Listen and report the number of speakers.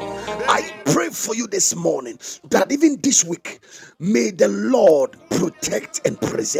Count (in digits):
1